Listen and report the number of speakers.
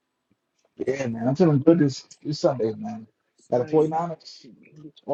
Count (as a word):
one